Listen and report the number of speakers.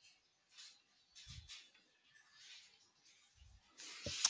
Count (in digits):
0